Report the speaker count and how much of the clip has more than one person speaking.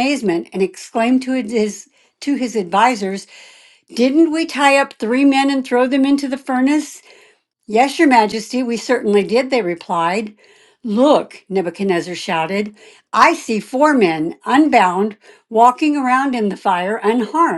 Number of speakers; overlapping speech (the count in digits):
1, no overlap